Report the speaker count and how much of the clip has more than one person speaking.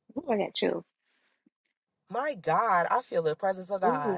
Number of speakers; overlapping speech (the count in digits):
2, about 9%